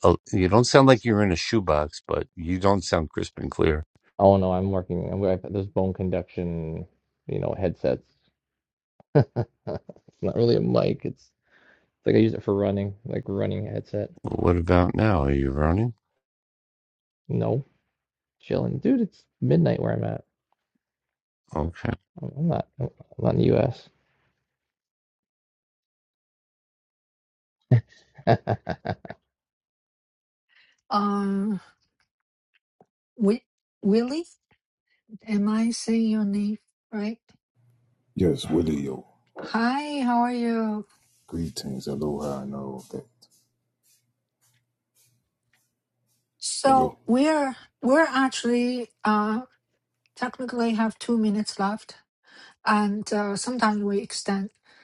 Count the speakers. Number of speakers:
4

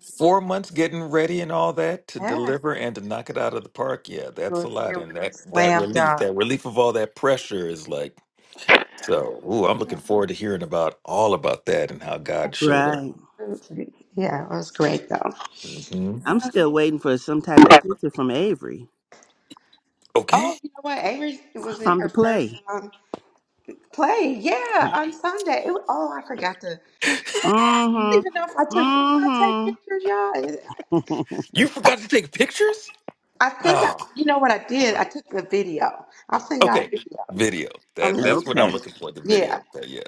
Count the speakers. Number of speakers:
3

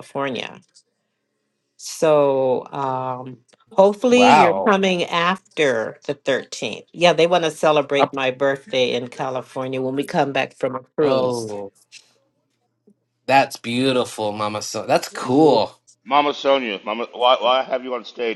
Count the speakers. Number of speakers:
3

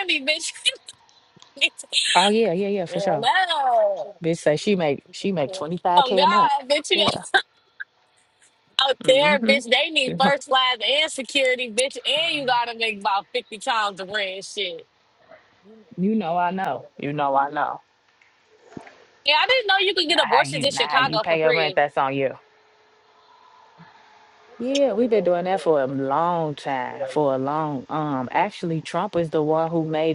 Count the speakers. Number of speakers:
2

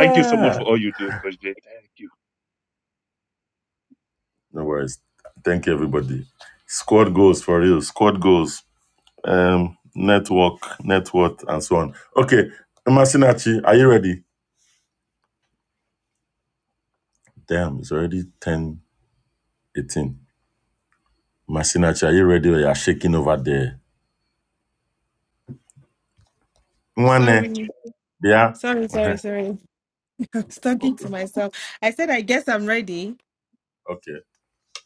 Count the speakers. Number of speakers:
3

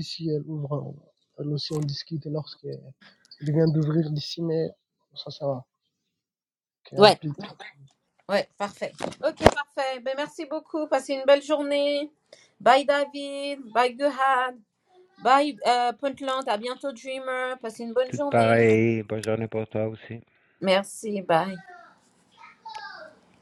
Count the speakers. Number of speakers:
3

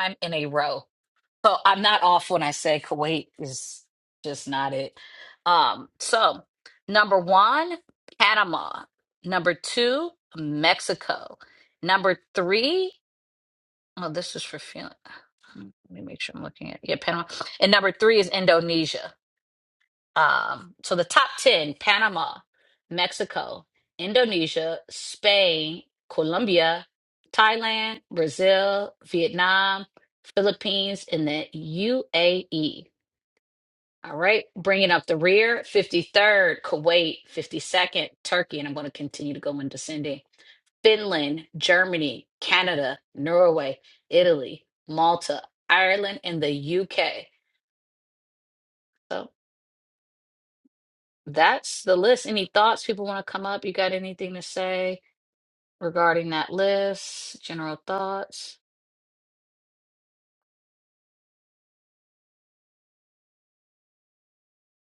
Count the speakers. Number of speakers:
1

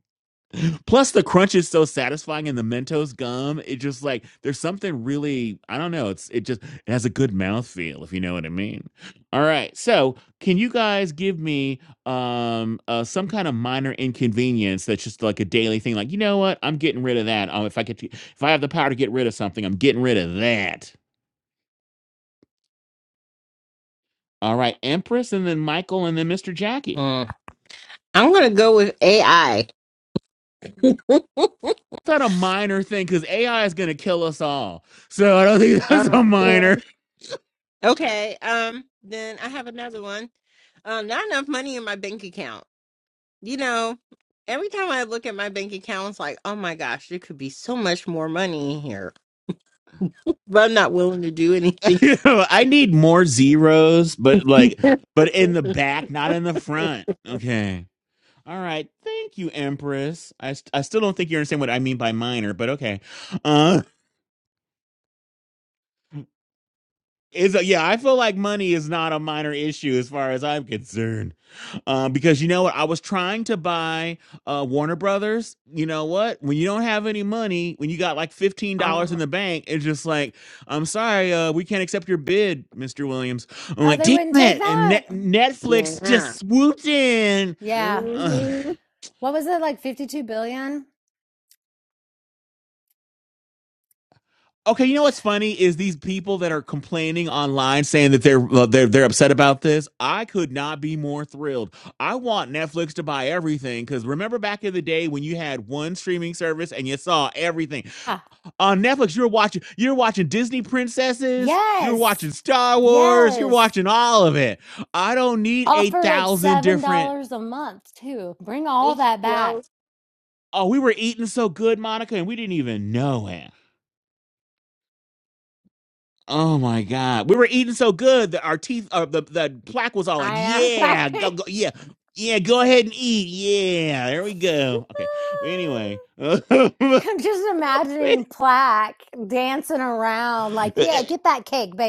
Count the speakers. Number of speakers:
3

